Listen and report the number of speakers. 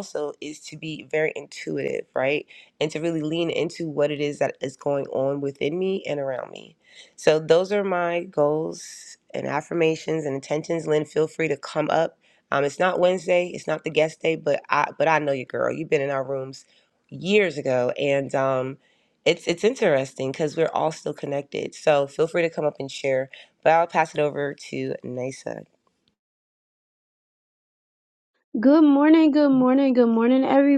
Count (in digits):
2